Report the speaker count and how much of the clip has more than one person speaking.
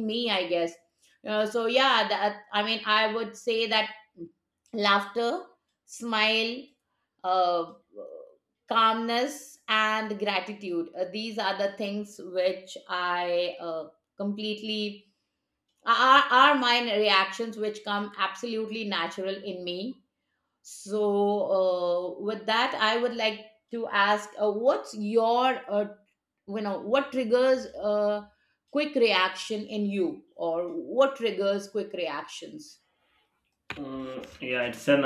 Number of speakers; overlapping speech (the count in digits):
2, no overlap